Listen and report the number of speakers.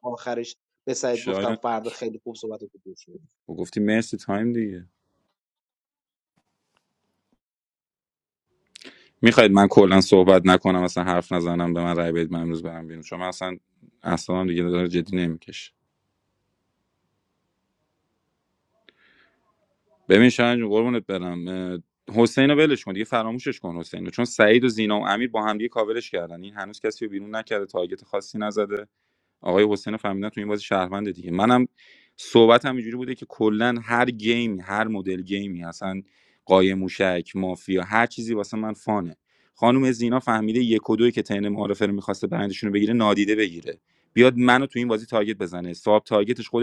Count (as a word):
two